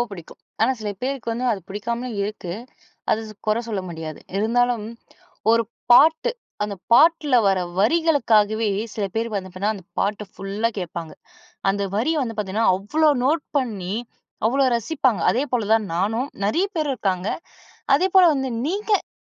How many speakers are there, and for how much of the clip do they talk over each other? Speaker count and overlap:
1, no overlap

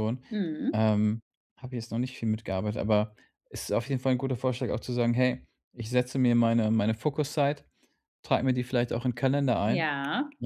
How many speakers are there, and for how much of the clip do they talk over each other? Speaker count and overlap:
2, about 2%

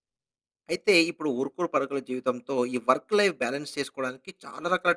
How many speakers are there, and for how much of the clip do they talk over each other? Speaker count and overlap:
1, no overlap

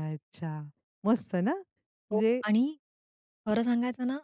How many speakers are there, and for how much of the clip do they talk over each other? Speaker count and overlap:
2, about 8%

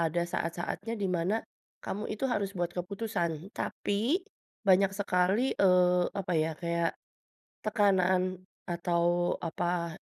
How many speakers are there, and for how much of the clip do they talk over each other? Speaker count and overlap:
1, no overlap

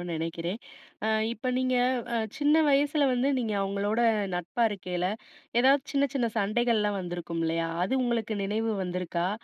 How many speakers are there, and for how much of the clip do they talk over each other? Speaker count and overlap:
1, no overlap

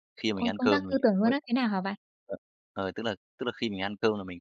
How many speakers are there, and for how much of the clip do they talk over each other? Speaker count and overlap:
2, about 22%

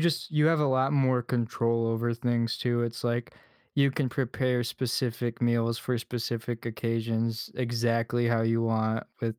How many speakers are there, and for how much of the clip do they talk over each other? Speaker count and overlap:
1, no overlap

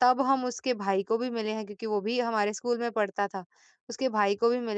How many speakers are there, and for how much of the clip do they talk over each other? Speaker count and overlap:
1, no overlap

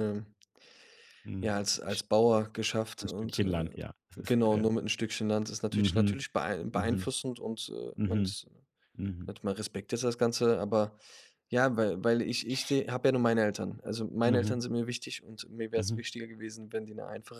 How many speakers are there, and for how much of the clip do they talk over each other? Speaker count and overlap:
2, about 17%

